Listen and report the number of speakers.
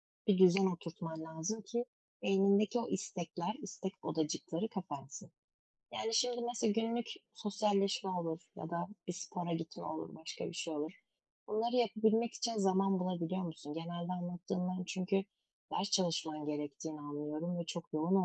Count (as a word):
one